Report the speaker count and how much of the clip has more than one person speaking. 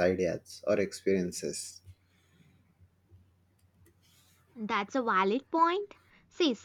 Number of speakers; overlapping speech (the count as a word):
two, no overlap